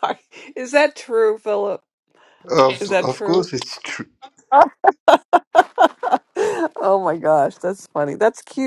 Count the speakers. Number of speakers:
2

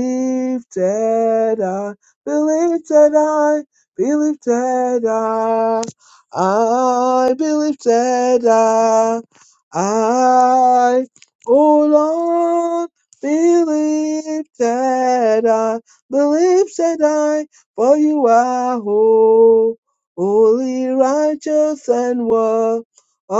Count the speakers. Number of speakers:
1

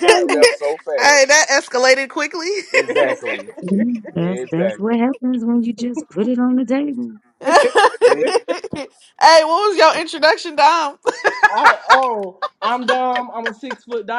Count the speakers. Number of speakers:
4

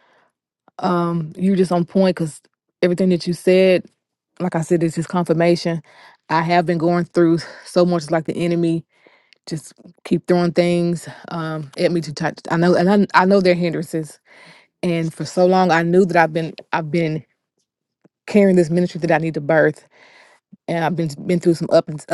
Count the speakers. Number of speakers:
1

